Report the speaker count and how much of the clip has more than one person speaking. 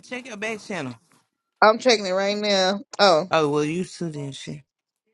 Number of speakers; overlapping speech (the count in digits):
2, no overlap